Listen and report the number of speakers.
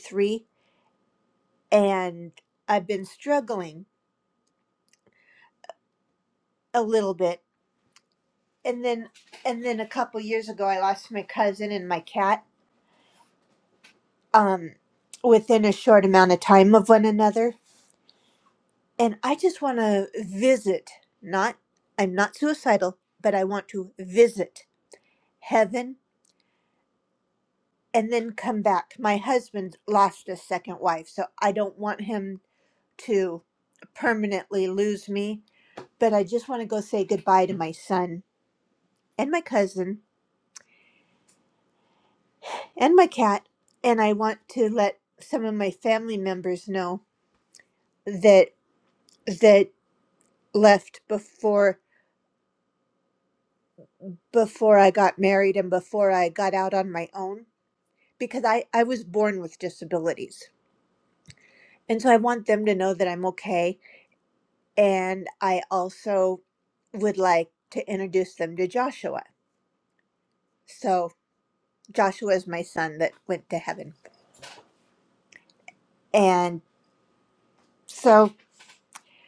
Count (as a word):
one